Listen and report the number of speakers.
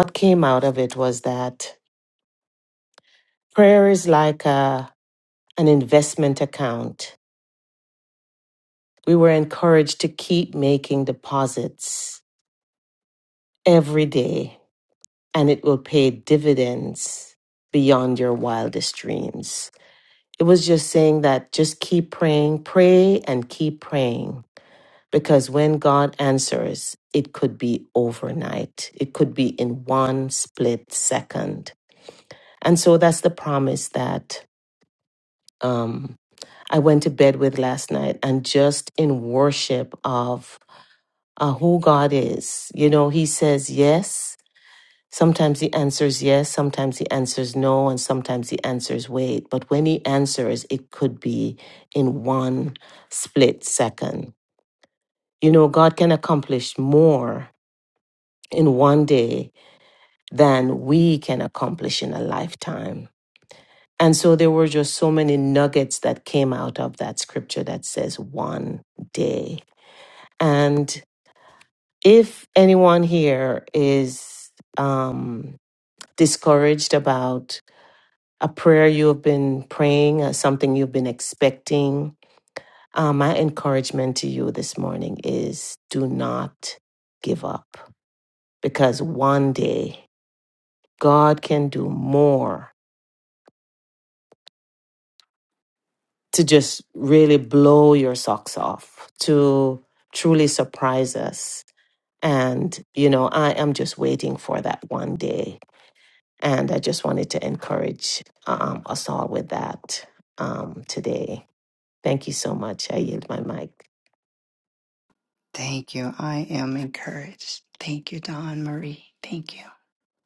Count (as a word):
two